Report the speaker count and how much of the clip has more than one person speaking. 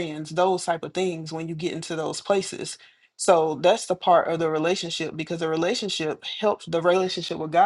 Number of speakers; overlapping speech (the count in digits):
1, no overlap